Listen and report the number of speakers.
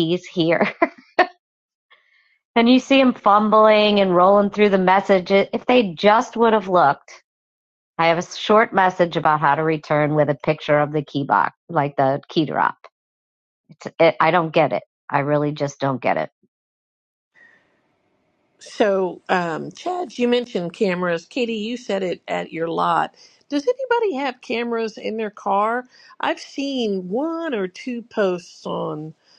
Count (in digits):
2